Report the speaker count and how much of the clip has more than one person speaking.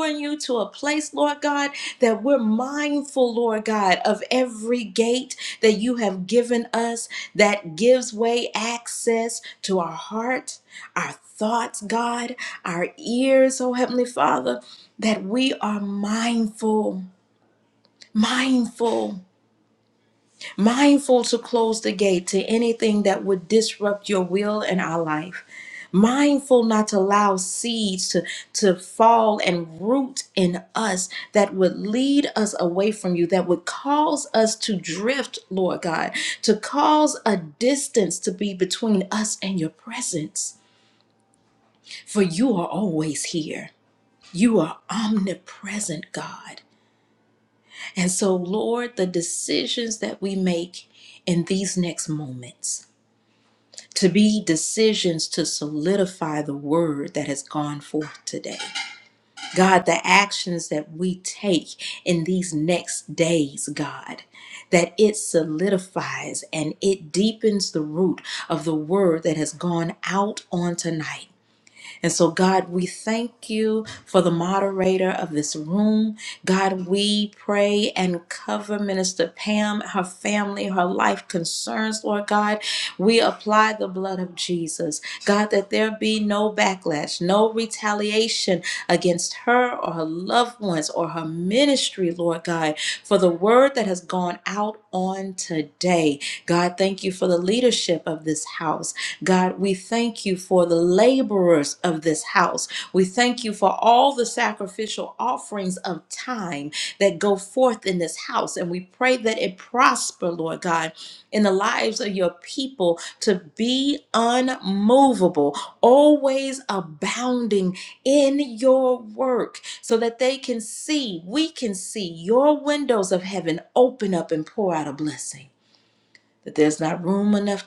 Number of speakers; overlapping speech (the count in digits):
1, no overlap